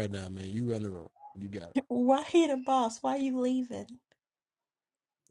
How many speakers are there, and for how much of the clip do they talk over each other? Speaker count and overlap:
2, no overlap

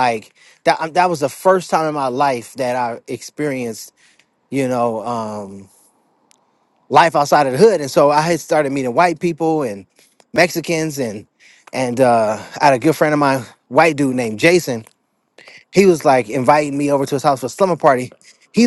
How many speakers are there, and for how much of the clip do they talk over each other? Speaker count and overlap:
1, no overlap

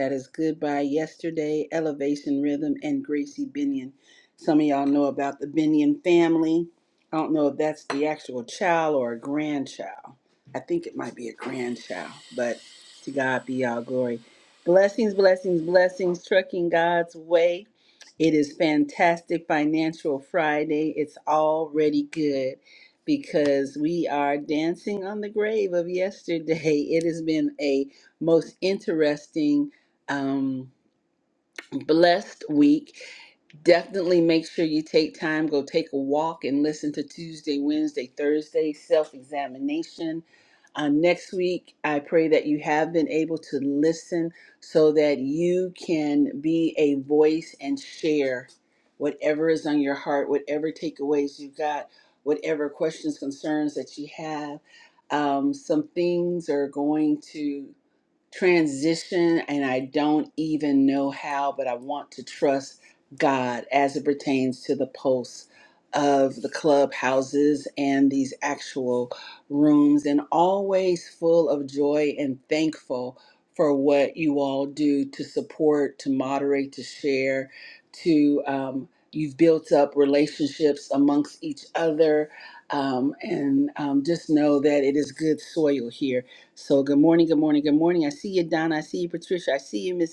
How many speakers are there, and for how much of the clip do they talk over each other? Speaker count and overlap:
1, no overlap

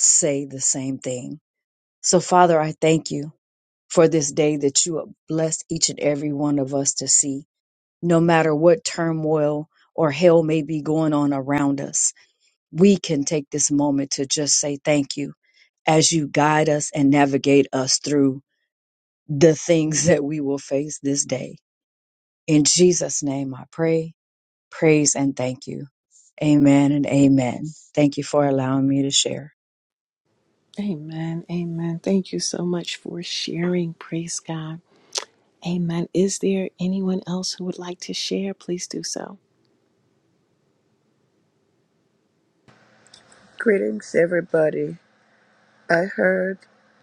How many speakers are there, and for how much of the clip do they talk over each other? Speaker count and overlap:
3, no overlap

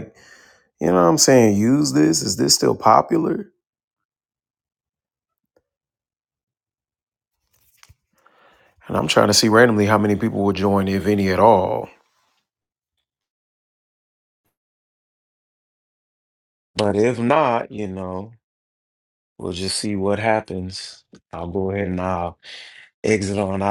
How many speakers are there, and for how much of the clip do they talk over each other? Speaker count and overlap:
1, no overlap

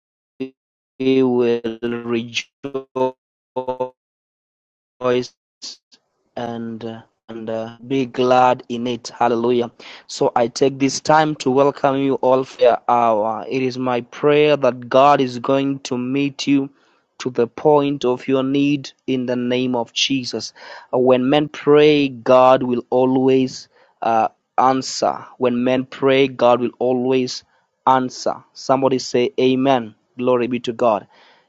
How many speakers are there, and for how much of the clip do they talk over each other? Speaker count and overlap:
1, no overlap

